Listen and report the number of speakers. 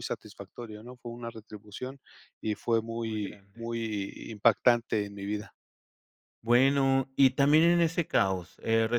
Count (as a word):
two